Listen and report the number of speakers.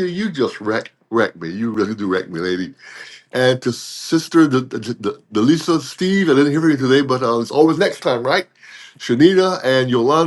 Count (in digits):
1